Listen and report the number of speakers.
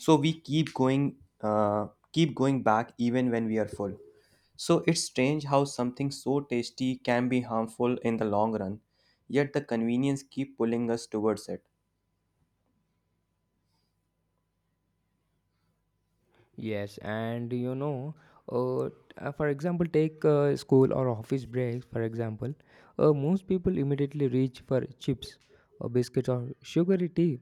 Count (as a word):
two